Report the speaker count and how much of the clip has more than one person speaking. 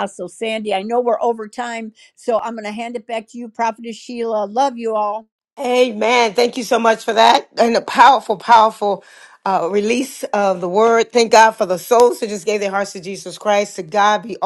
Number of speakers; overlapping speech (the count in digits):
2, no overlap